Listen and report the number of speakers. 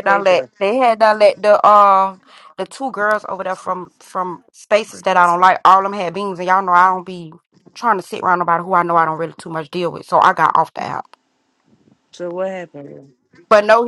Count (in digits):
2